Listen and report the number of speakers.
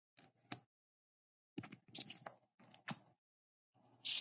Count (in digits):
0